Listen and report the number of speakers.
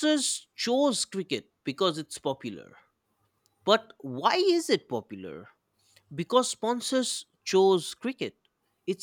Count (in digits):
1